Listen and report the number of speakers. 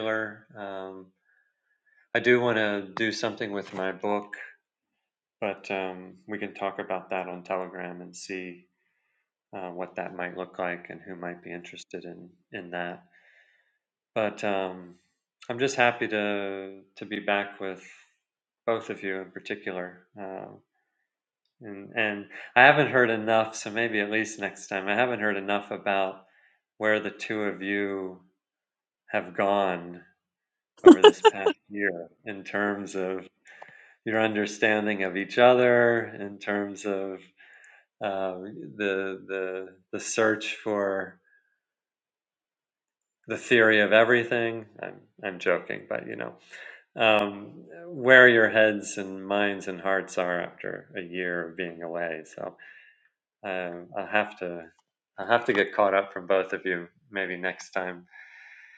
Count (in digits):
1